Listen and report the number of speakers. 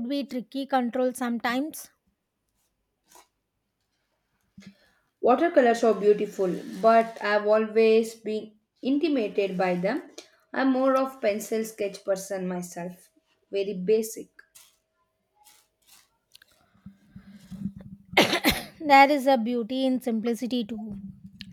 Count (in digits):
2